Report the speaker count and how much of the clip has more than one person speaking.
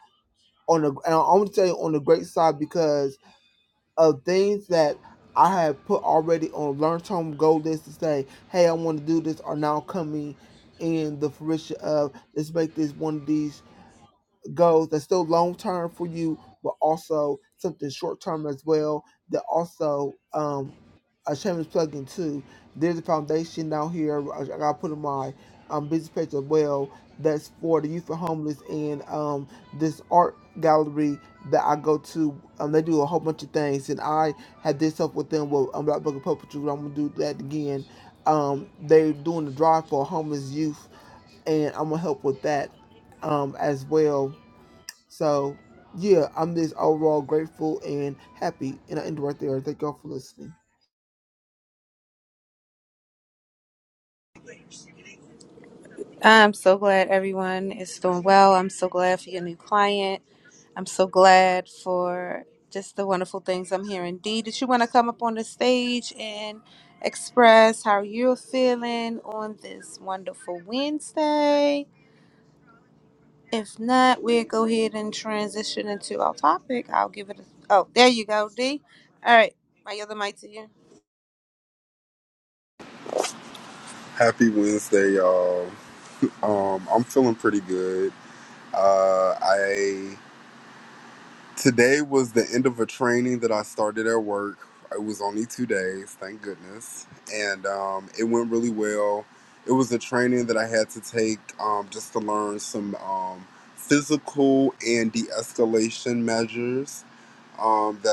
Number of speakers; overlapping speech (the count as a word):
three, no overlap